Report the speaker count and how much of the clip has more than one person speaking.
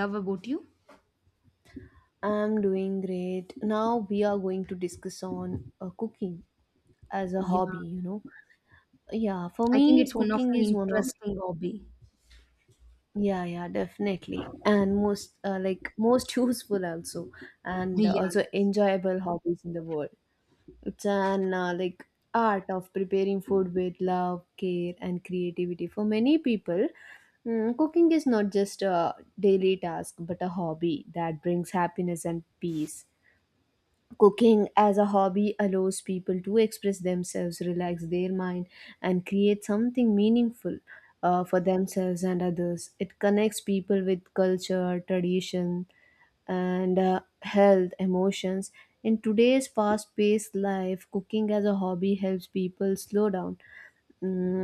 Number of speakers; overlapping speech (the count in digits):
2, about 4%